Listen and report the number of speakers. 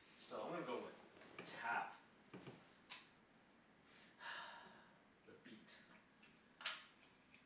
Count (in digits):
1